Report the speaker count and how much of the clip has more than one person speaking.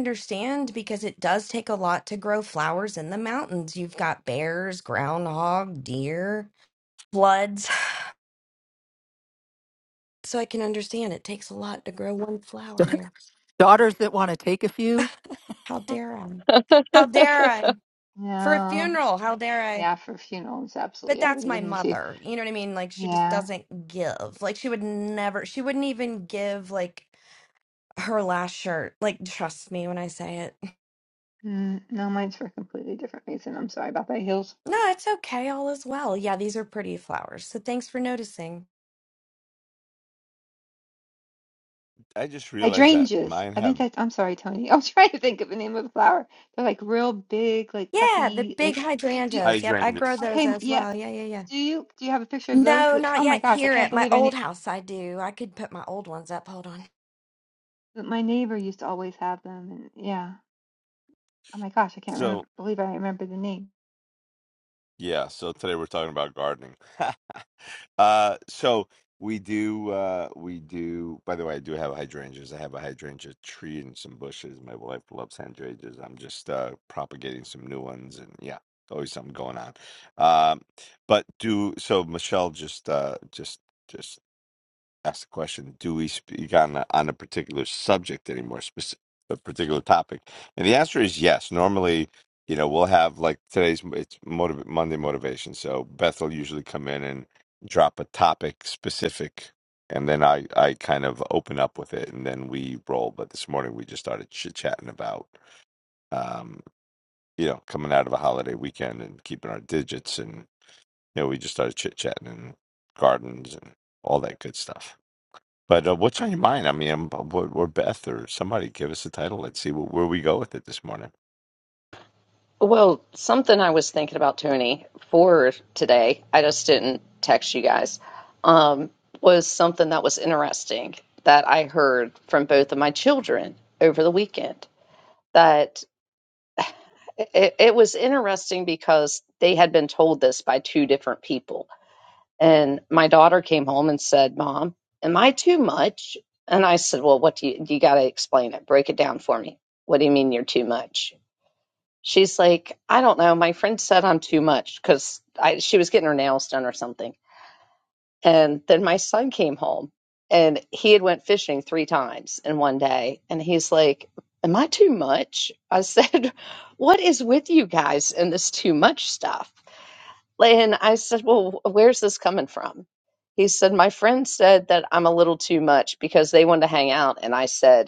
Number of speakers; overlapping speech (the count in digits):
5, about 4%